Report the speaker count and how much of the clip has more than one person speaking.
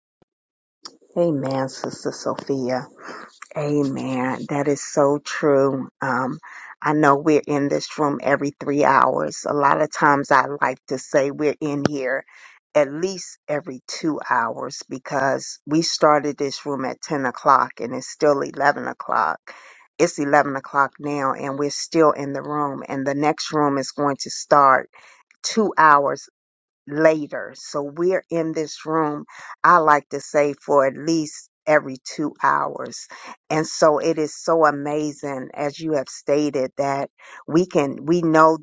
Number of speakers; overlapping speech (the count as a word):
one, no overlap